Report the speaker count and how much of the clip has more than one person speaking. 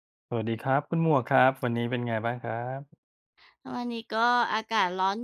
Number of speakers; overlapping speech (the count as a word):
two, no overlap